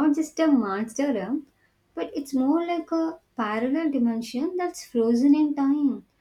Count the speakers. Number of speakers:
1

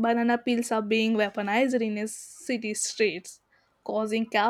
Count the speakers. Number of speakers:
1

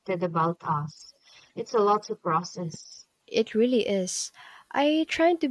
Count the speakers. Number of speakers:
2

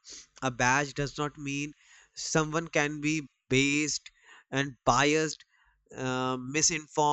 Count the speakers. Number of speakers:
1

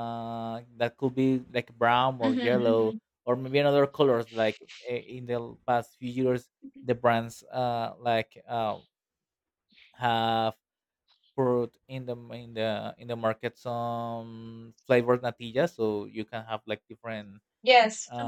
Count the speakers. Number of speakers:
2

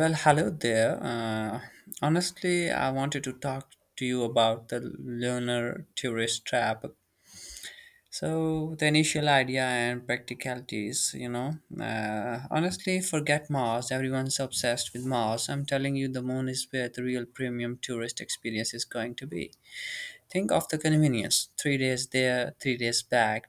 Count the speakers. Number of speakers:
1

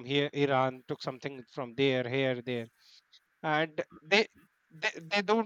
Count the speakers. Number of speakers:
1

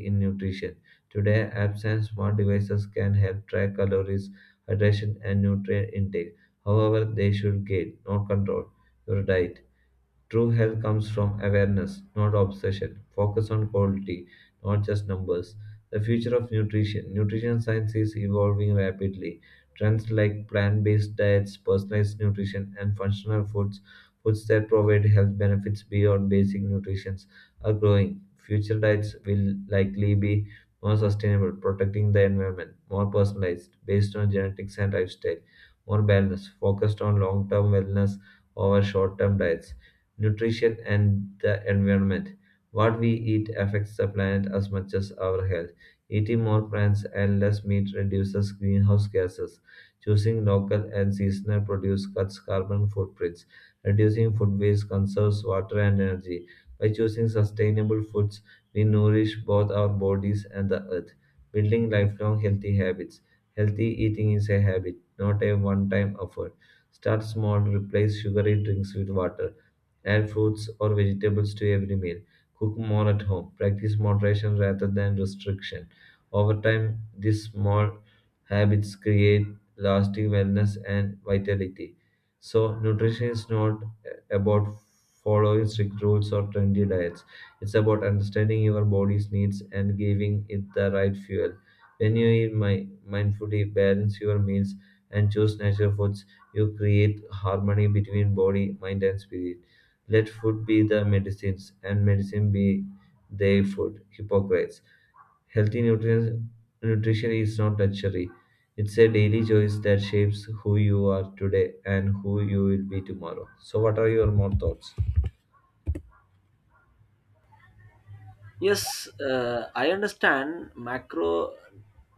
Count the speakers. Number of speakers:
2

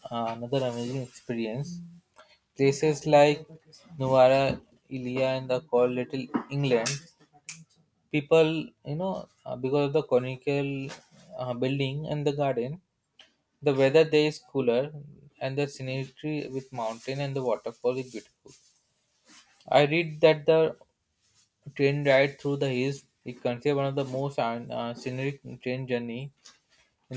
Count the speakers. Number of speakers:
1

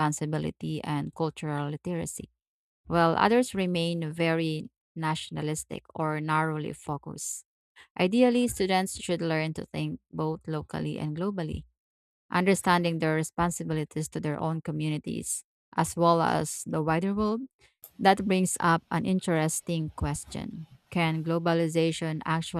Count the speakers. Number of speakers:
1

